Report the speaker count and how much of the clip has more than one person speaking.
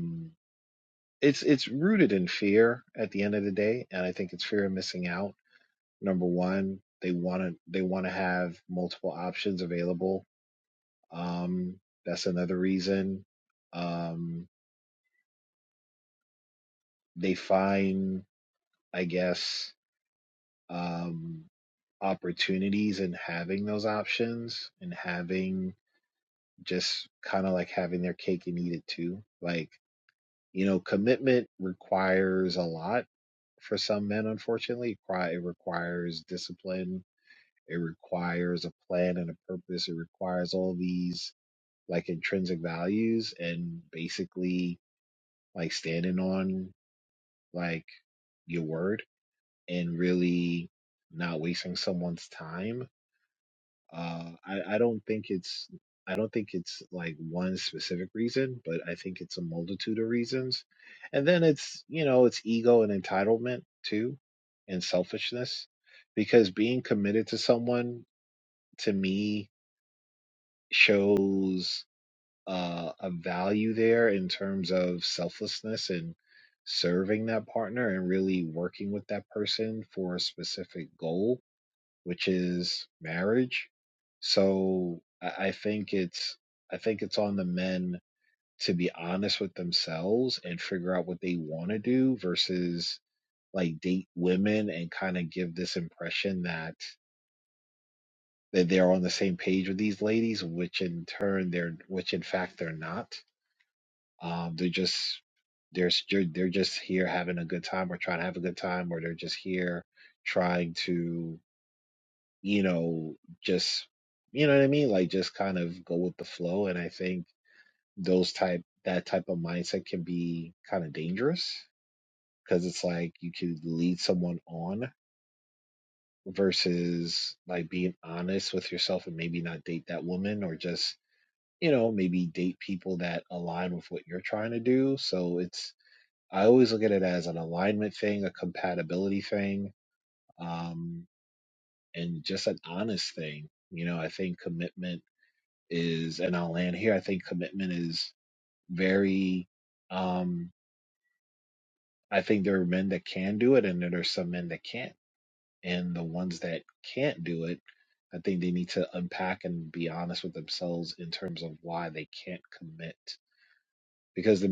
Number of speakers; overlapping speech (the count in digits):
1, no overlap